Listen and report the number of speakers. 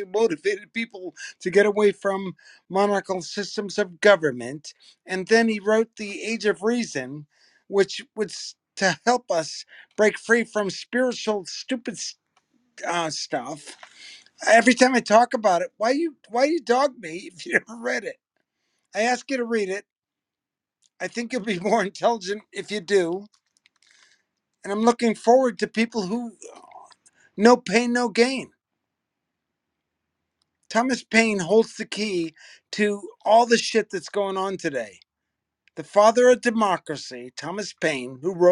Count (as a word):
one